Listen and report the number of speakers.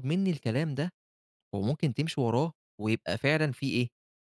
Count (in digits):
1